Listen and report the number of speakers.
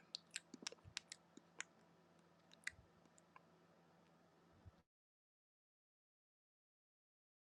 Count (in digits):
0